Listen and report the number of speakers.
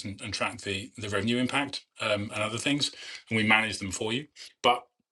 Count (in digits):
1